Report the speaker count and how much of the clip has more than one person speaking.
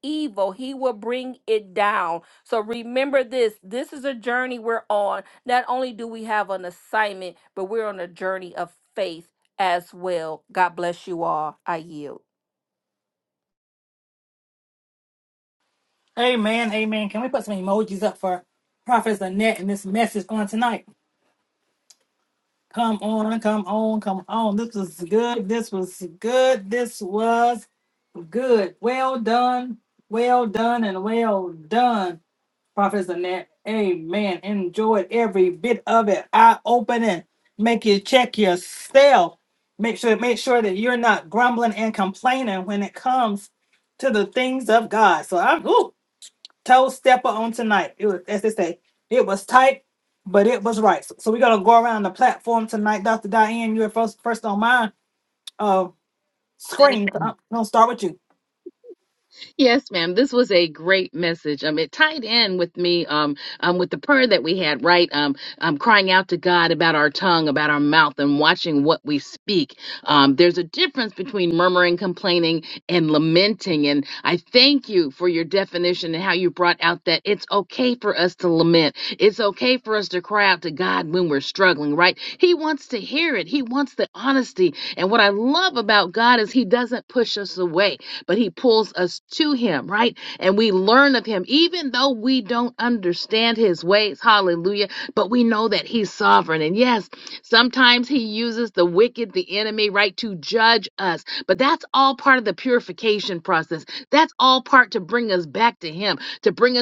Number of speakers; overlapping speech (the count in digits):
3, under 1%